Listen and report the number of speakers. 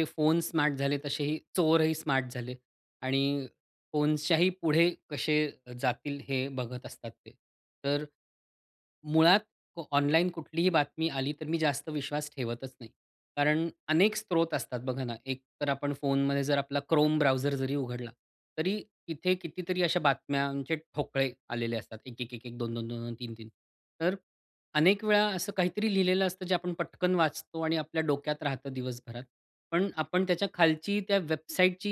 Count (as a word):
one